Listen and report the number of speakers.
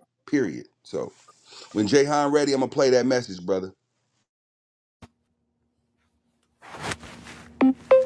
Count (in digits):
1